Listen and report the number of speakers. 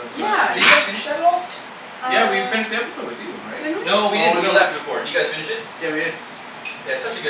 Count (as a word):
three